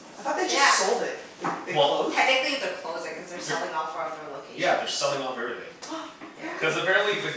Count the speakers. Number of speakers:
three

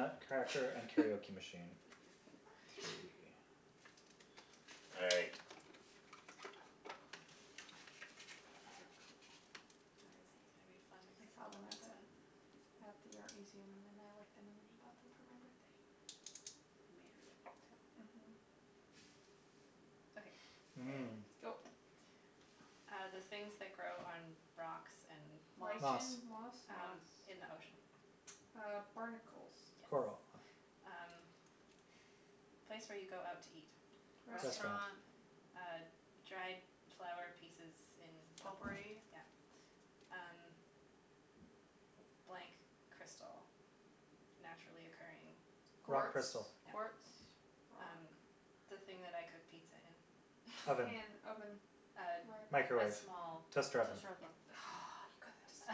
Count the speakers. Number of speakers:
four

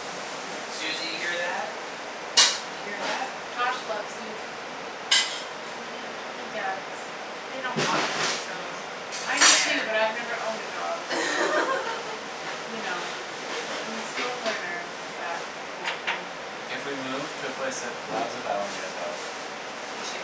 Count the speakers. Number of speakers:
four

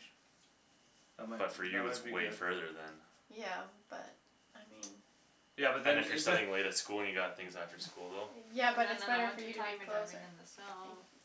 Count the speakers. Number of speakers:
four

